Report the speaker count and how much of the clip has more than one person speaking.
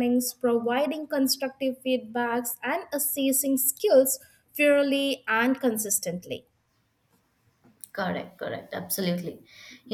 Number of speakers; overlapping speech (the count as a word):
two, no overlap